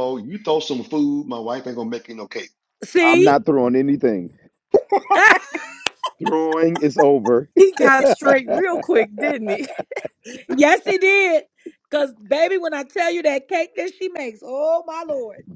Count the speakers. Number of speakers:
four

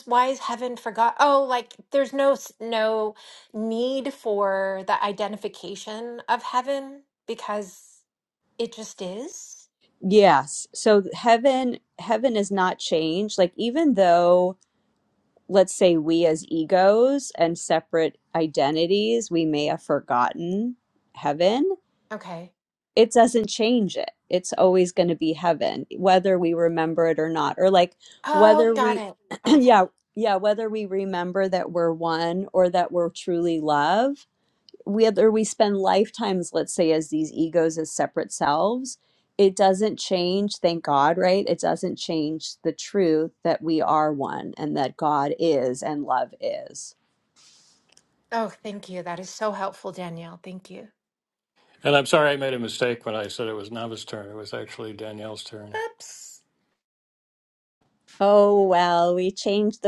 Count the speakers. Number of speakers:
three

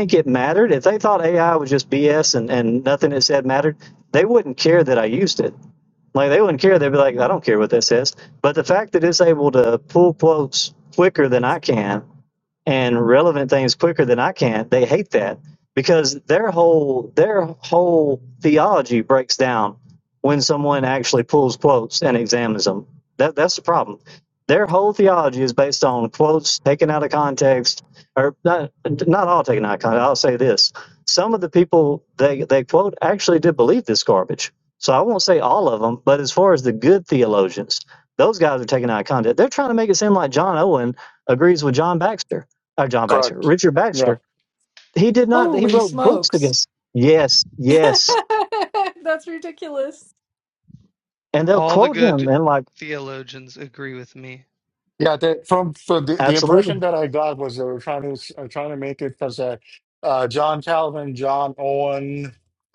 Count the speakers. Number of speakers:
four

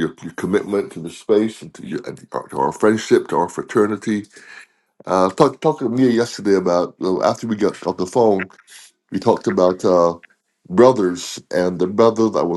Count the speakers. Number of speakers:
one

